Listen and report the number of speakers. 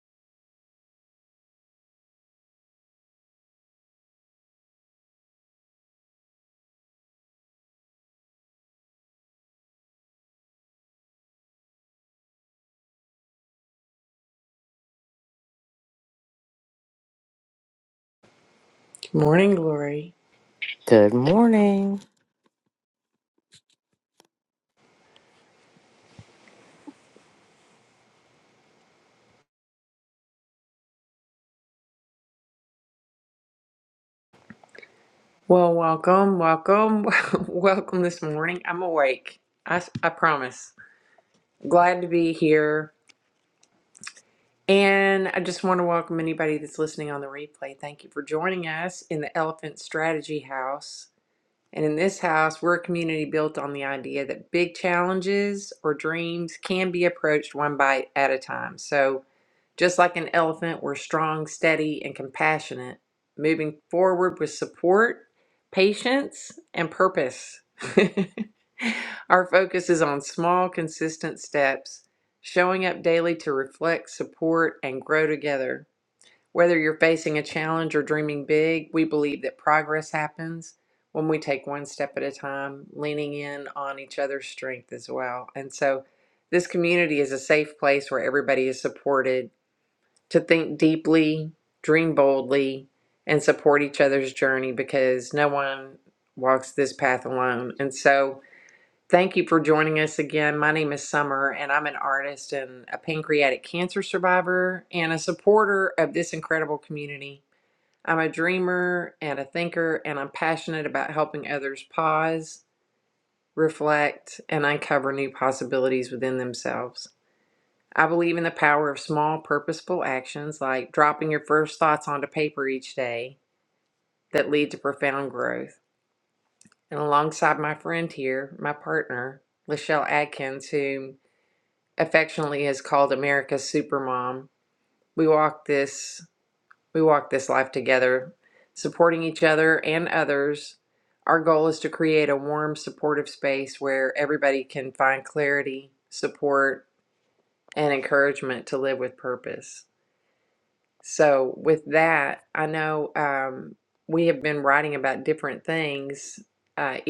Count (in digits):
2